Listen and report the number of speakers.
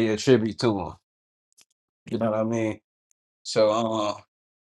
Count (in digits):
1